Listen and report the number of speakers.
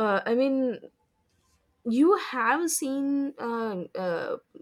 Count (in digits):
1